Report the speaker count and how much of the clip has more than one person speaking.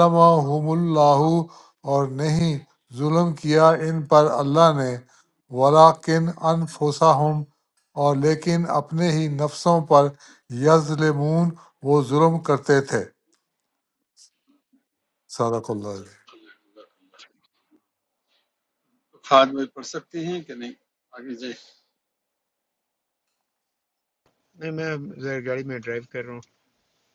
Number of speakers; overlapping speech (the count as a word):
three, no overlap